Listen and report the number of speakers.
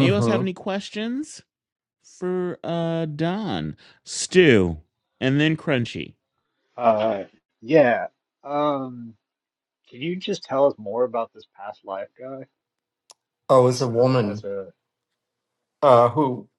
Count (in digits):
3